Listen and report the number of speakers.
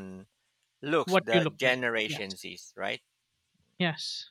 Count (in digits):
2